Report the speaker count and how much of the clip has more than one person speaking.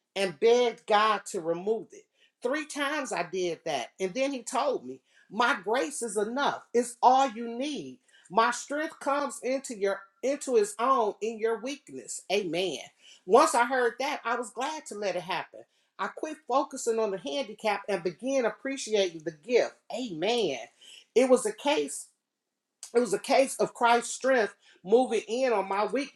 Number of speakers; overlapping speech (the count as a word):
one, no overlap